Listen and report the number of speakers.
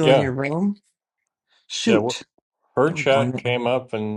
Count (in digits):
2